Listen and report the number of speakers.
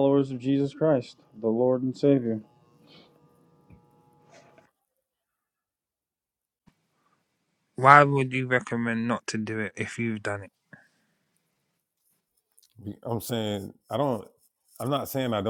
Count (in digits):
3